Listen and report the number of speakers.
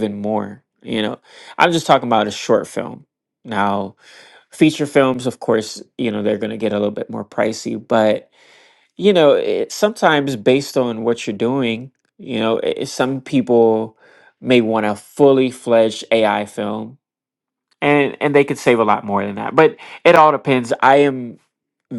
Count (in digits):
1